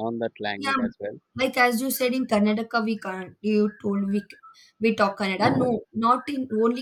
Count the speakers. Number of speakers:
2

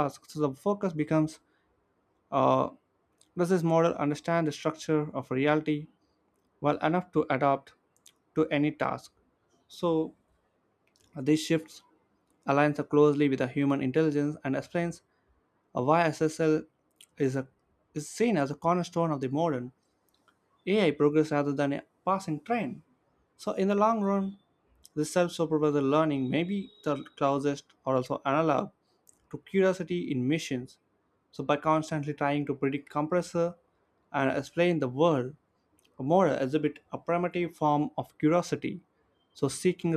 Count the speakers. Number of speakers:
1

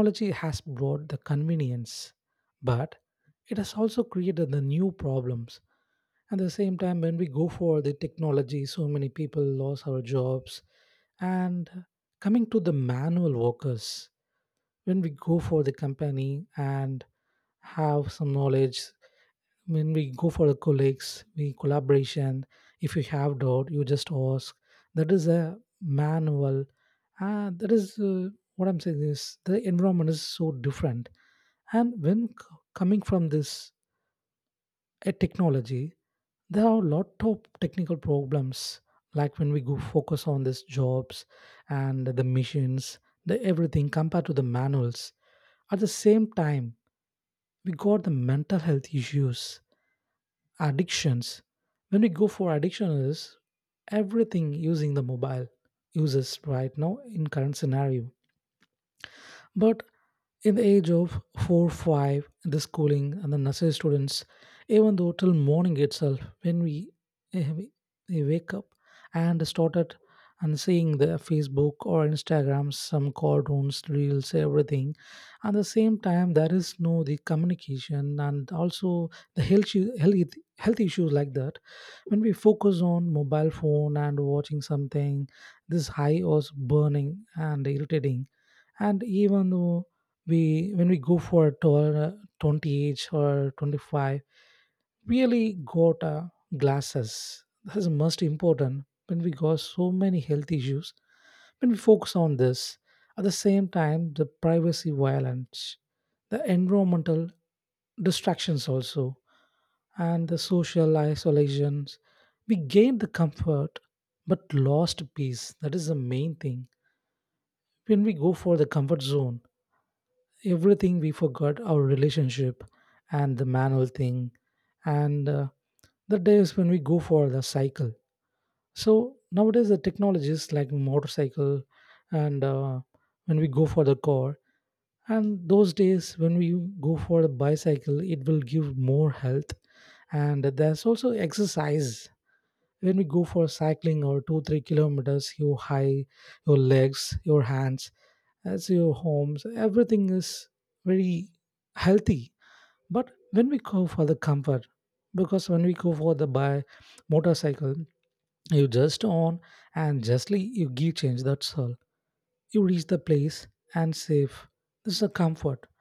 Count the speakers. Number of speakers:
1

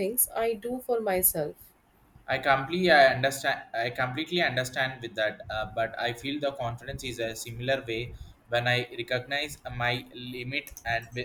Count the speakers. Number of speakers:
2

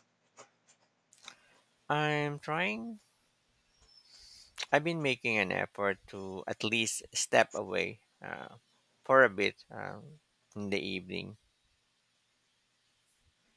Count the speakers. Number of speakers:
1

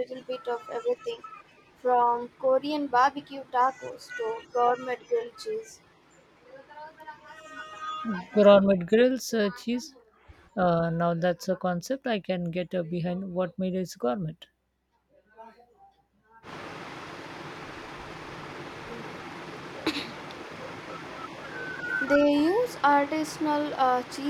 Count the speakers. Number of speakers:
2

